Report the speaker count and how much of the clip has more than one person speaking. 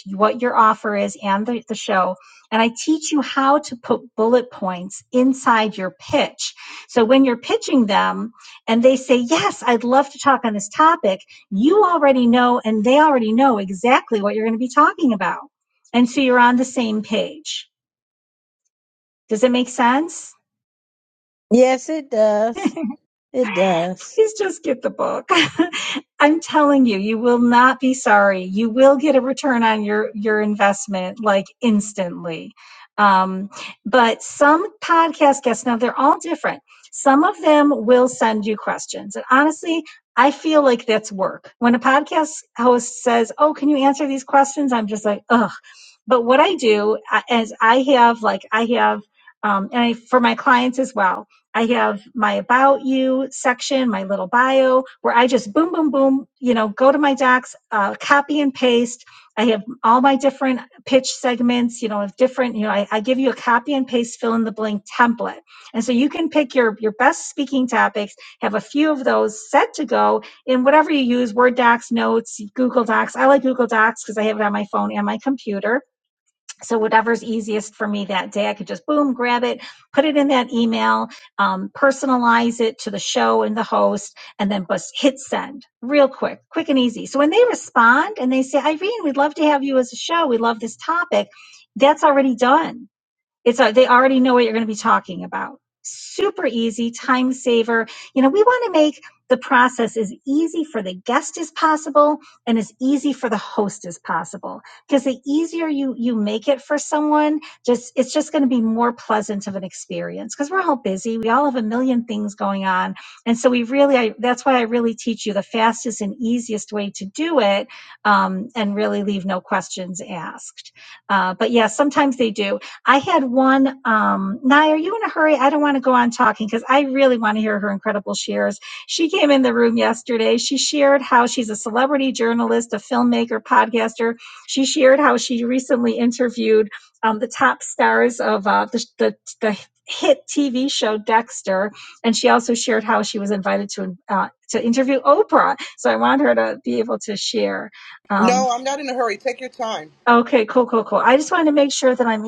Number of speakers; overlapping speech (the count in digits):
3, under 1%